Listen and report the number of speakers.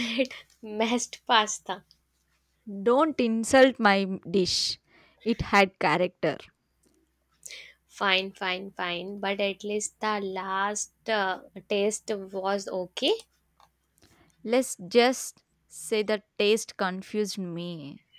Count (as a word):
two